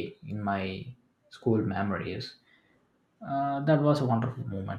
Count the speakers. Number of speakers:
one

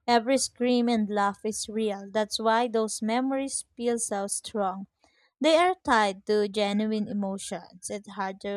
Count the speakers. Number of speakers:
one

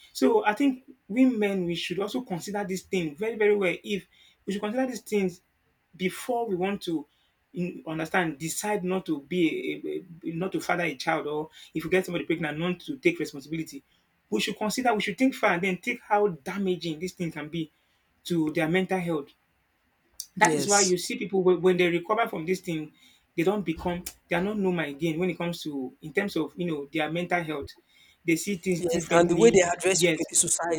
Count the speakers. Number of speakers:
two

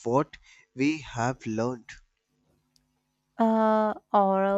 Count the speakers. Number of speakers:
two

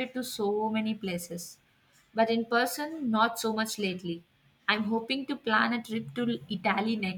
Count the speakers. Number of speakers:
one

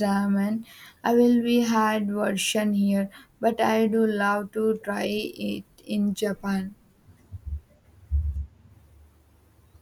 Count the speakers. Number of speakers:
one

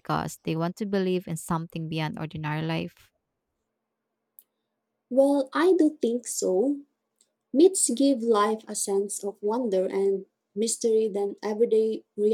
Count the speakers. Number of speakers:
two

